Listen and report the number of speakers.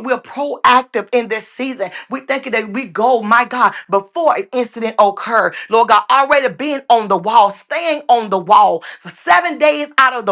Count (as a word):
one